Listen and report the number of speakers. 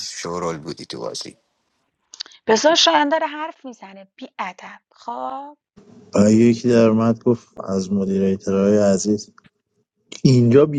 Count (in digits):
3